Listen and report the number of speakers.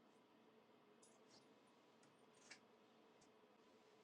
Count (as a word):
zero